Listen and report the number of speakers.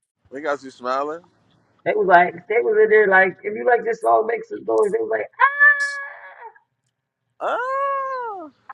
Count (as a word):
two